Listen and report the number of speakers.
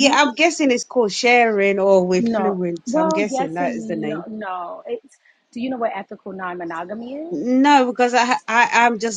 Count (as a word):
two